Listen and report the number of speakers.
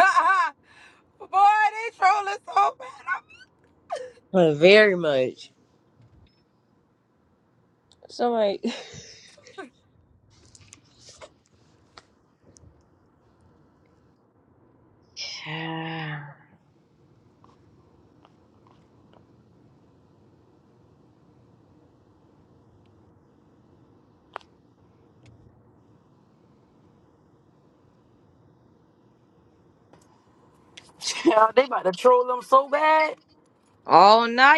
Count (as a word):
three